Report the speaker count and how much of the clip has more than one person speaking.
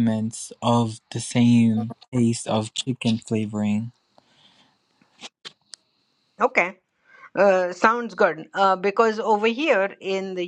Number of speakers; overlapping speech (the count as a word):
two, no overlap